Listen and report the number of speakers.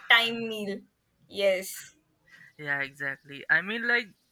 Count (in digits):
2